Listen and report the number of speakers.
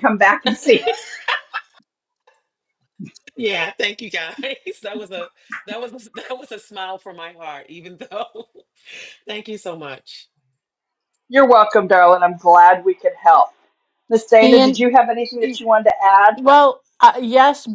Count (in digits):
3